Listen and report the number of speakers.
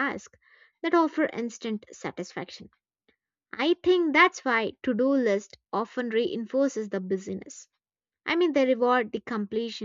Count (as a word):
one